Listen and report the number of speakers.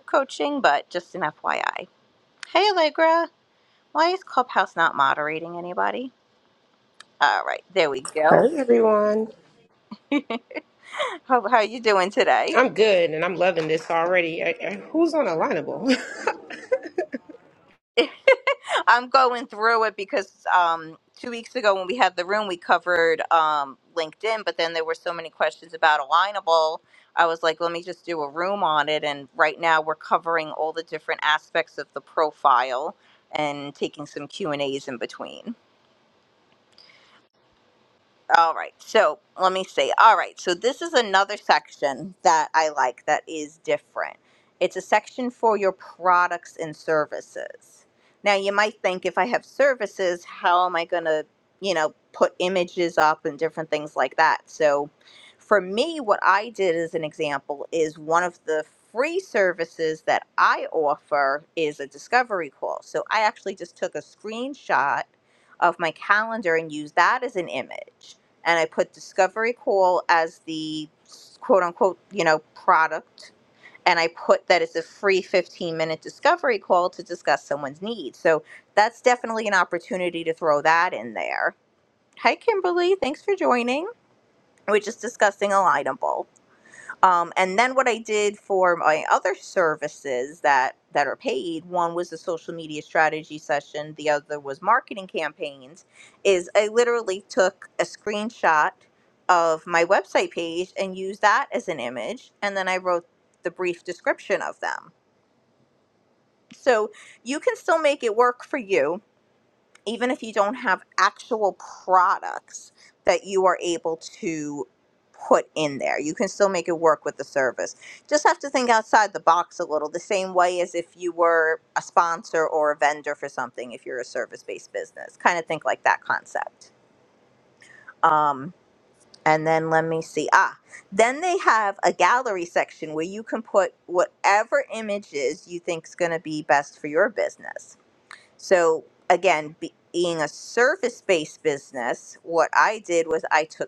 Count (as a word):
two